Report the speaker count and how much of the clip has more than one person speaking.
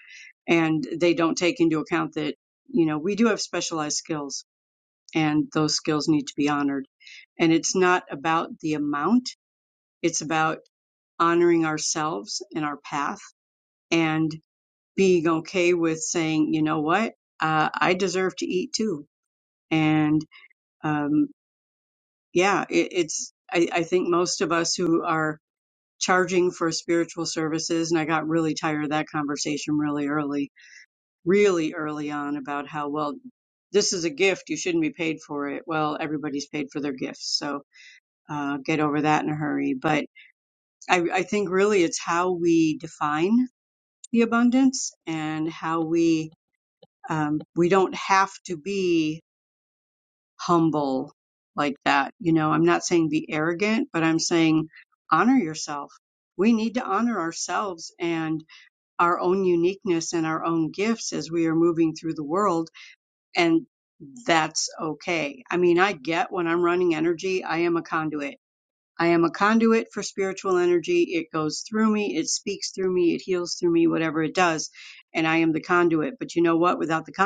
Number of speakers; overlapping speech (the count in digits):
1, no overlap